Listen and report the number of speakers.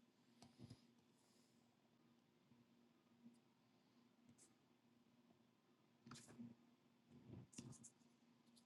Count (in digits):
0